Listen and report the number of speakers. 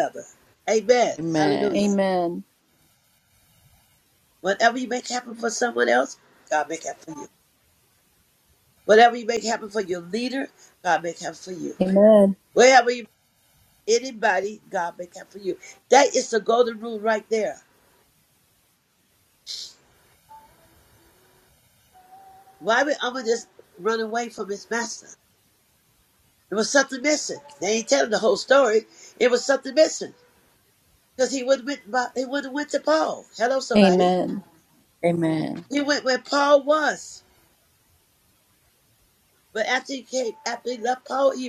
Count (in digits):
3